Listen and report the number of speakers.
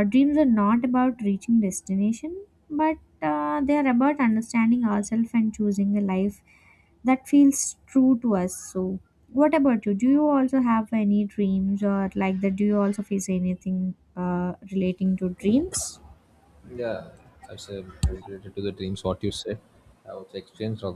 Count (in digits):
2